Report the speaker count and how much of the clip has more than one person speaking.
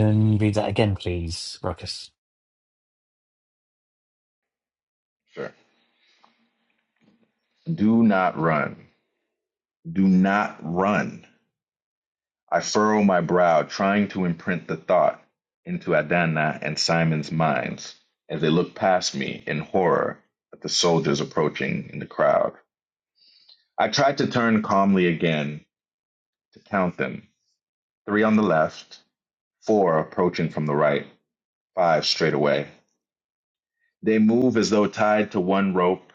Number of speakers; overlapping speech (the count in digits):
2, no overlap